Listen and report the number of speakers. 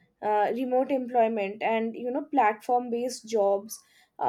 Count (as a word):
one